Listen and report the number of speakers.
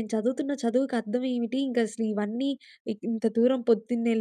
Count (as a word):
one